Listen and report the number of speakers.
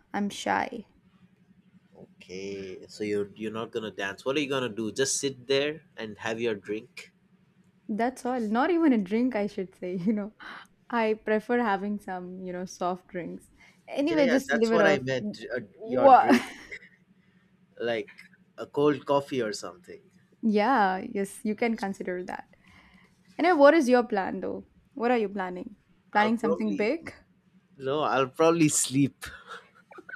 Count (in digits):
2